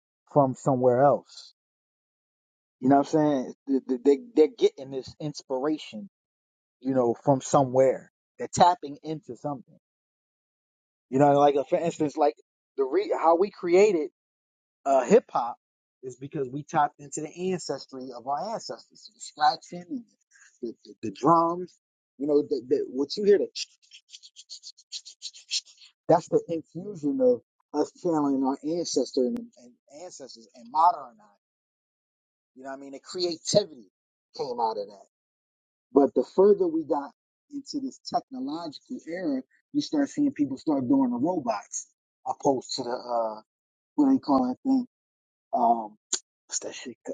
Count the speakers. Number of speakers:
1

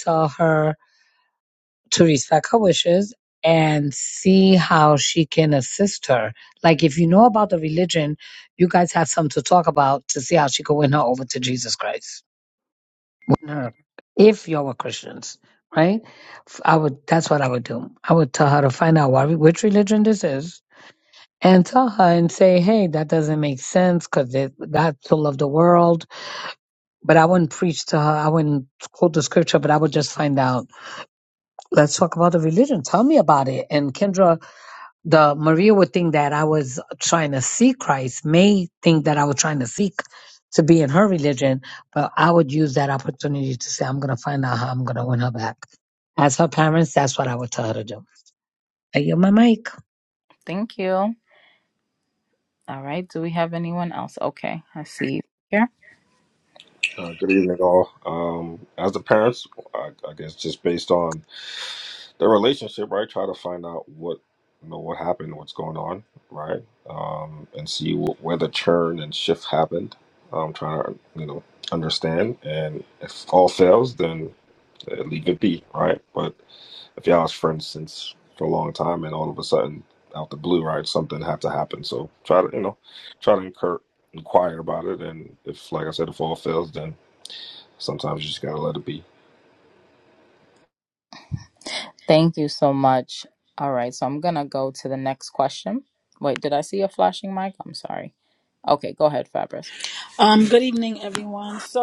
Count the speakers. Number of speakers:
4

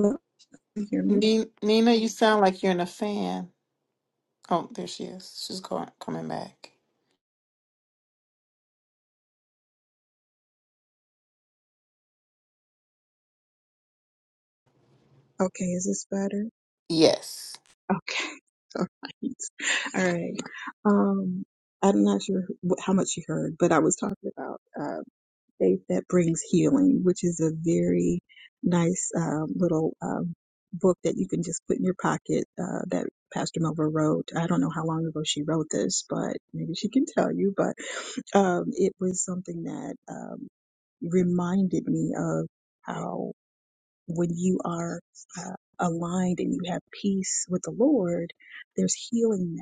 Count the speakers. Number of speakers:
2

